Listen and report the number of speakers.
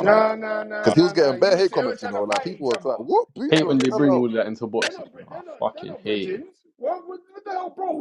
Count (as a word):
three